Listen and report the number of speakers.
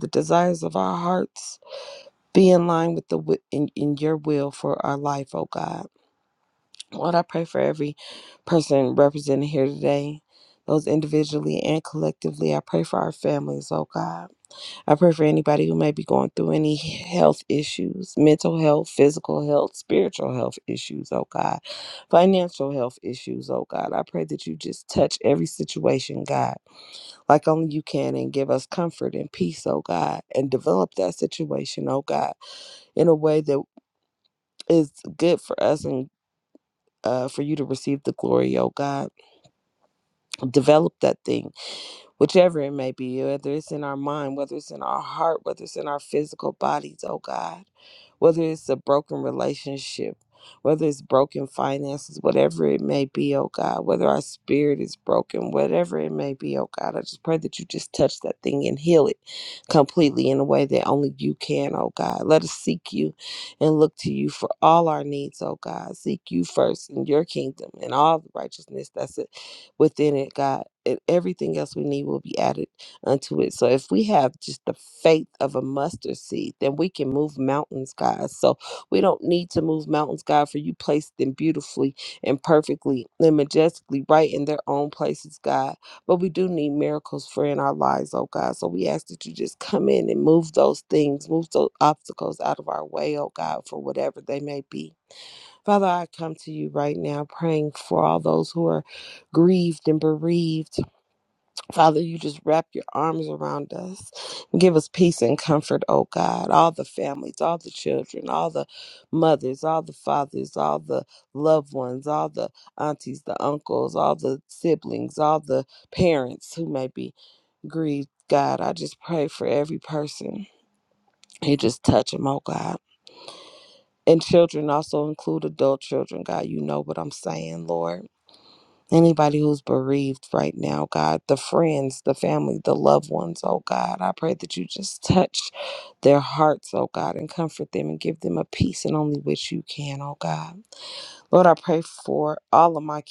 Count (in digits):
1